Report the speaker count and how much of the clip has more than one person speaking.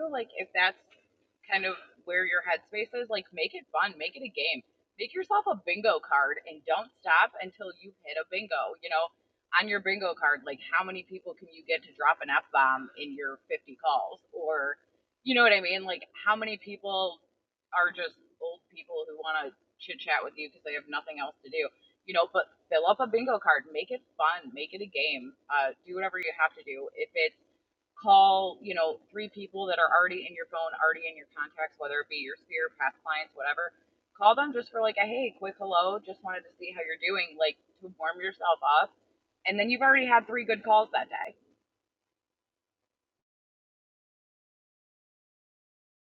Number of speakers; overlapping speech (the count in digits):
1, no overlap